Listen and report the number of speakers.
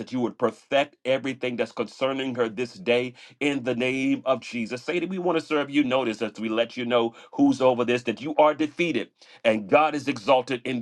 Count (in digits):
1